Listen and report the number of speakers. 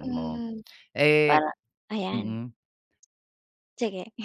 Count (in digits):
2